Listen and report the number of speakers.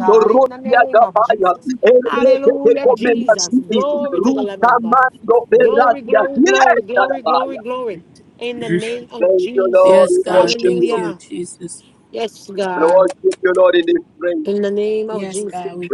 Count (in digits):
3